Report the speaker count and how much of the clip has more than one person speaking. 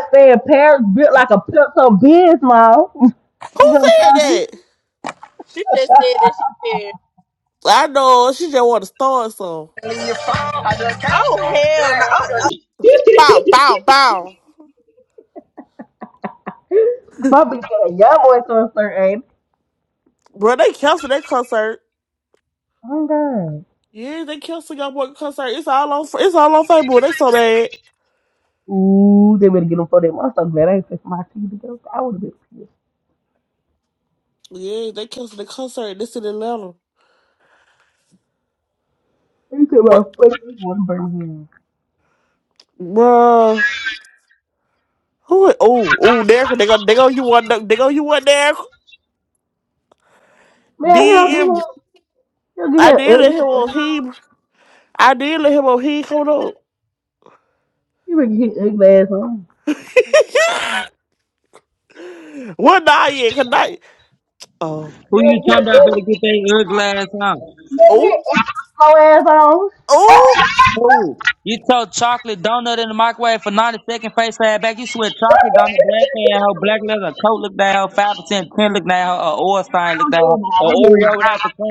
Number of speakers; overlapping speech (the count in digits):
4, about 5%